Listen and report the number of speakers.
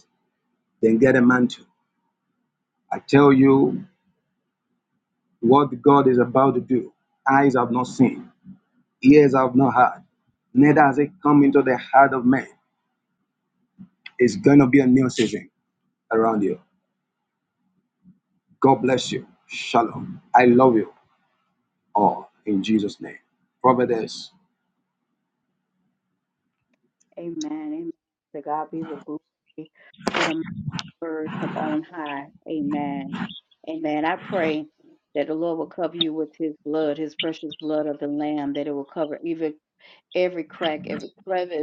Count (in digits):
2